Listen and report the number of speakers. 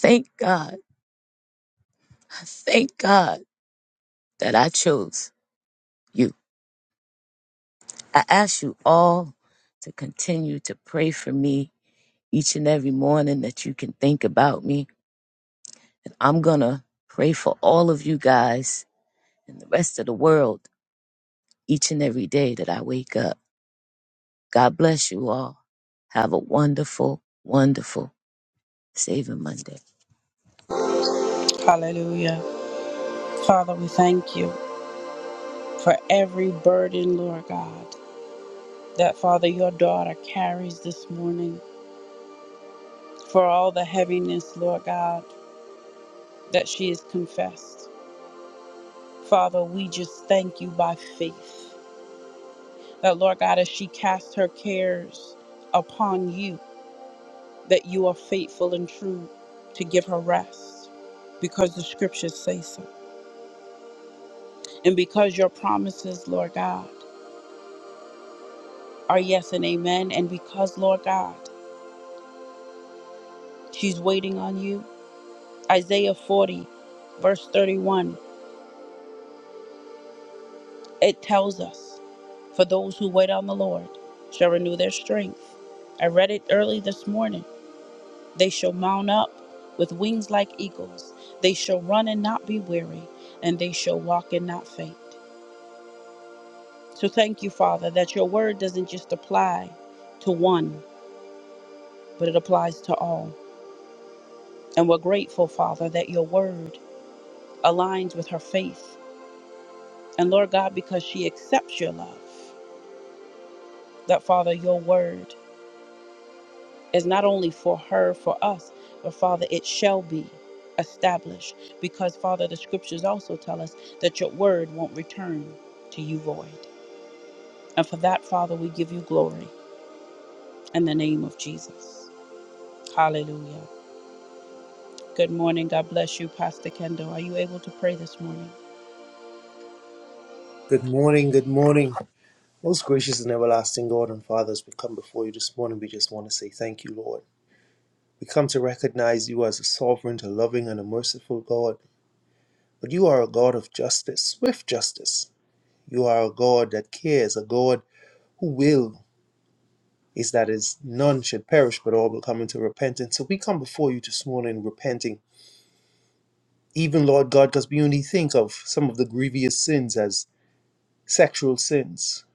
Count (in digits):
3